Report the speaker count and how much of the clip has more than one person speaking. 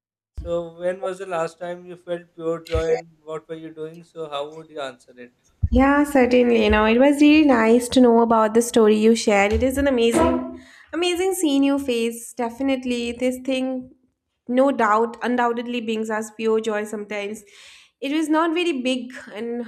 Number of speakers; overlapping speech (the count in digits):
2, no overlap